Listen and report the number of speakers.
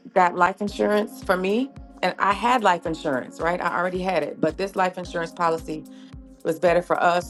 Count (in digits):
1